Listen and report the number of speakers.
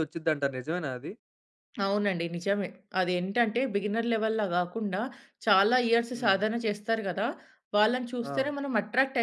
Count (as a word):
two